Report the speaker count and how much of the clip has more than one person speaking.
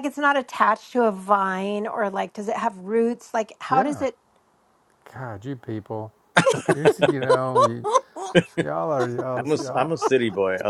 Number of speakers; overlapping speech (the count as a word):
three, about 8%